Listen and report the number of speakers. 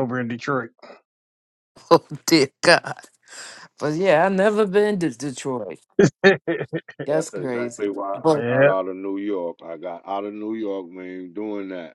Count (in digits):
3